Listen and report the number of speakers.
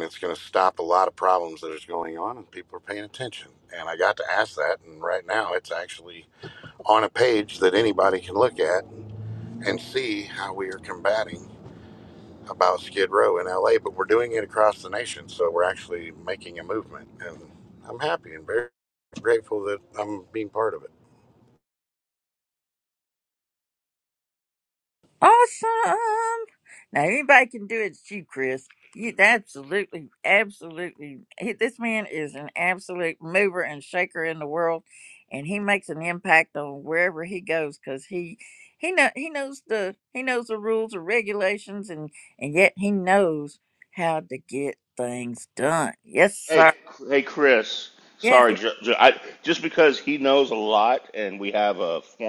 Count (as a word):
three